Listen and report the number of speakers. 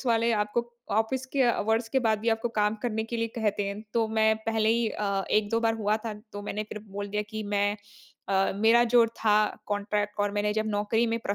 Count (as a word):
one